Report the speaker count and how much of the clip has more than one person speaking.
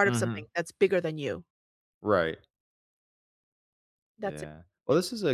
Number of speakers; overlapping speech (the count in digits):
2, about 11%